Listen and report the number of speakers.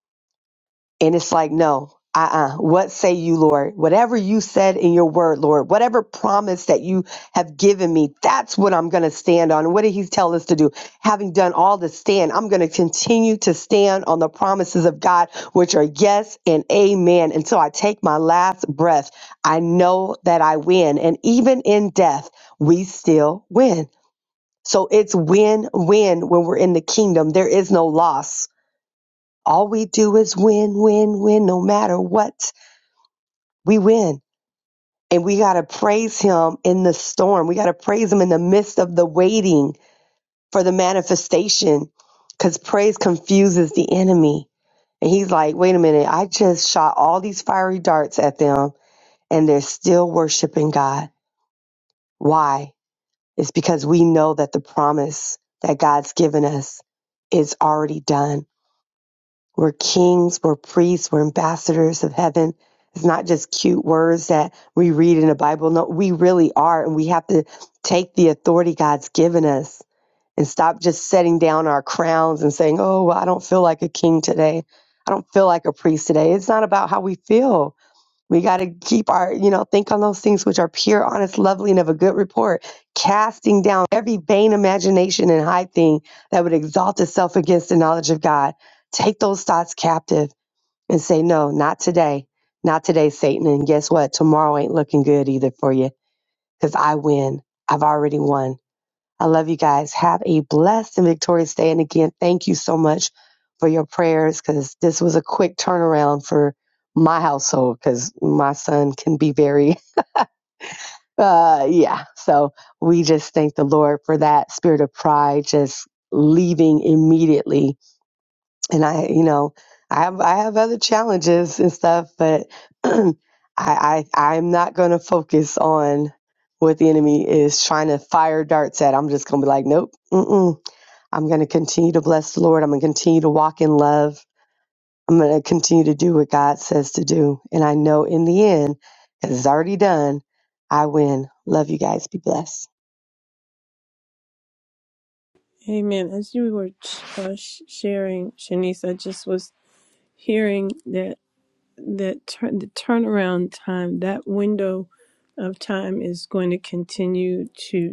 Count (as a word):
two